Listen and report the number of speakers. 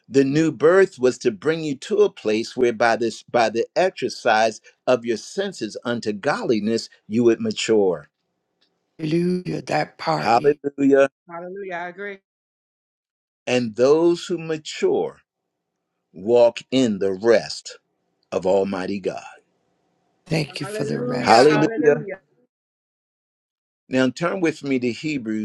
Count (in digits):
3